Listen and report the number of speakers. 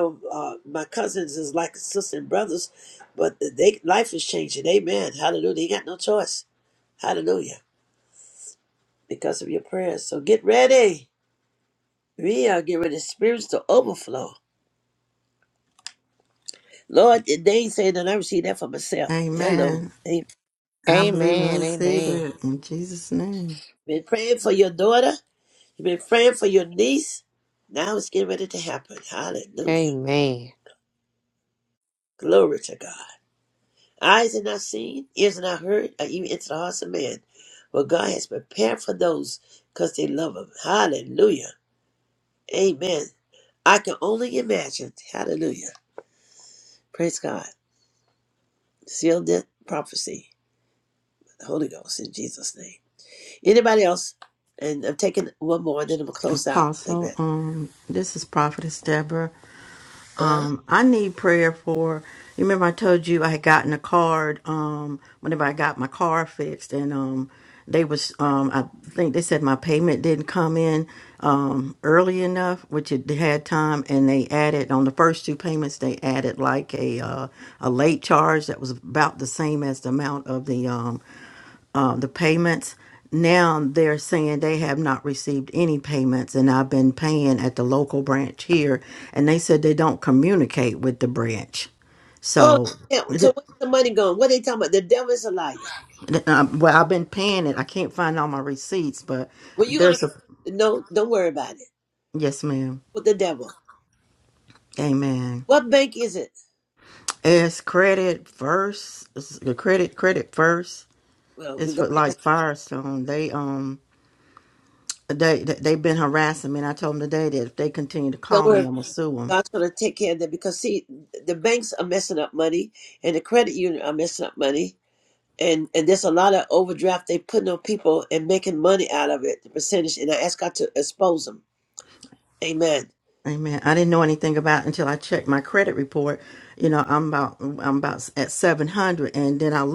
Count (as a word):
three